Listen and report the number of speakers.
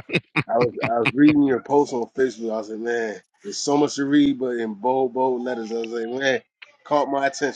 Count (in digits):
1